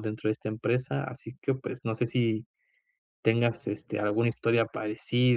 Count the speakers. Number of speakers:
one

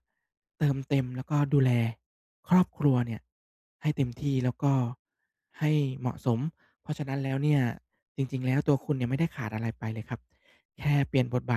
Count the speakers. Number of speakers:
one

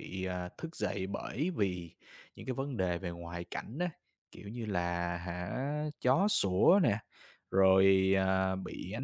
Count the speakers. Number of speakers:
one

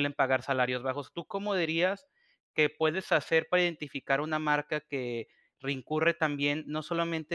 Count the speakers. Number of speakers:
one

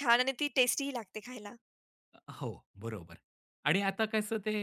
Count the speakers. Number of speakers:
two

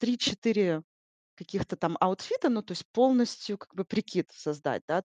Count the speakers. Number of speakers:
one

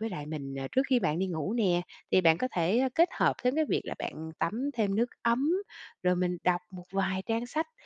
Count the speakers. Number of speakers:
one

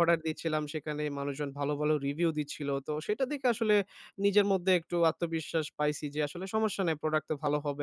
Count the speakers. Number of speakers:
one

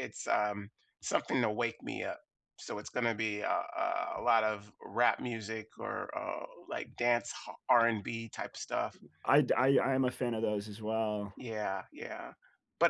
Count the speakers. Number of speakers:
two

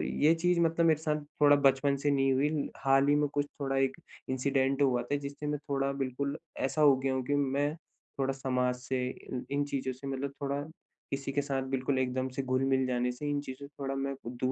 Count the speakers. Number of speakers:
one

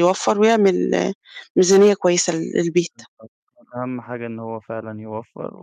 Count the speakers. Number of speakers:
two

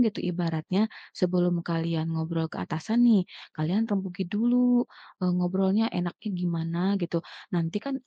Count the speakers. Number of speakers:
one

